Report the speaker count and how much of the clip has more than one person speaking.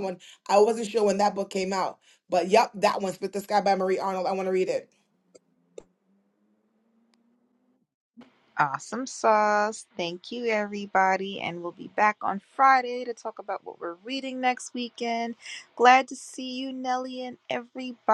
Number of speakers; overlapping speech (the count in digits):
2, no overlap